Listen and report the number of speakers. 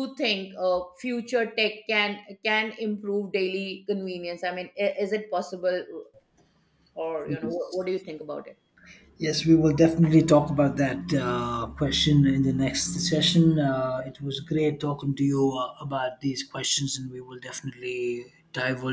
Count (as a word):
two